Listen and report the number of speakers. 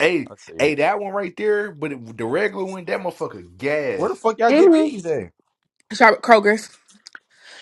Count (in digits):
3